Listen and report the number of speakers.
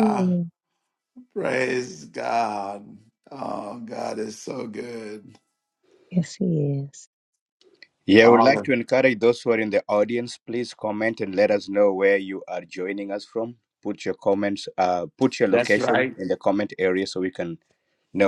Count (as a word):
three